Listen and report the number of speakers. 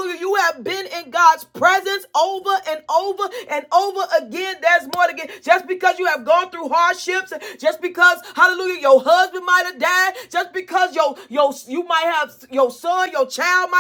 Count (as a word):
one